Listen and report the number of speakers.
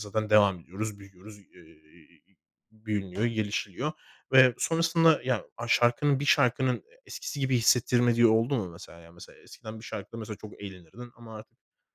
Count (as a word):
one